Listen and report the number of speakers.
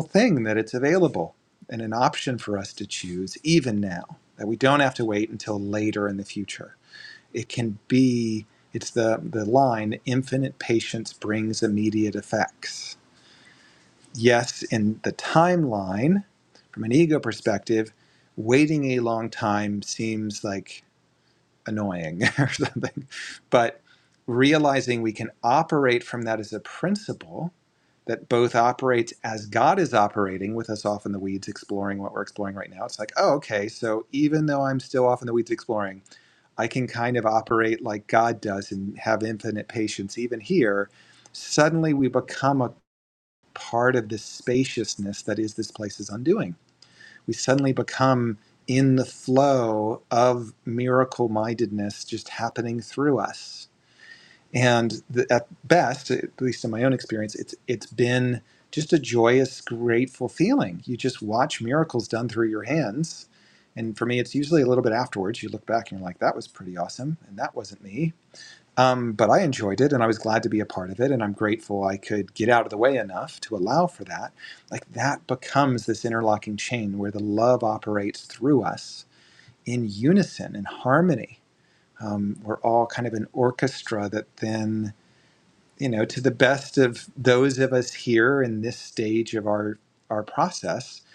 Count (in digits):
1